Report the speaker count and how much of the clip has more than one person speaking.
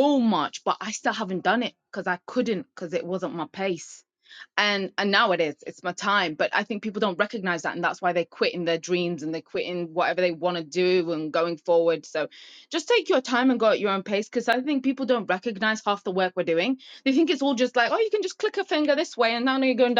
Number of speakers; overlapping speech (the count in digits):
1, no overlap